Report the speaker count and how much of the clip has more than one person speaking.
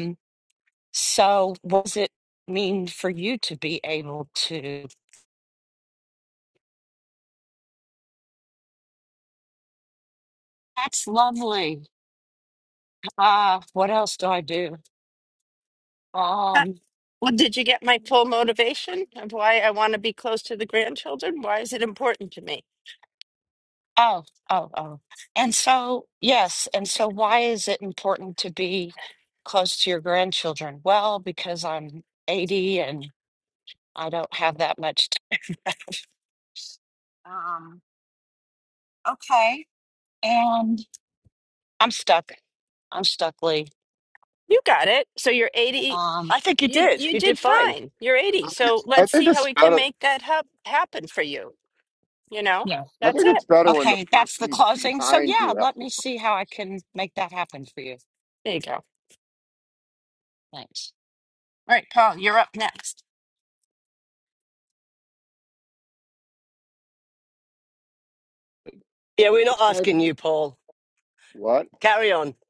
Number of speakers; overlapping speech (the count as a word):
four, about 7%